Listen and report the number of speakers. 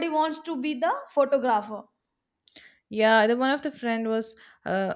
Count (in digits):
2